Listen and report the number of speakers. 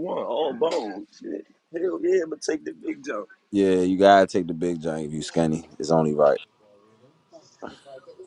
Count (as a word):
two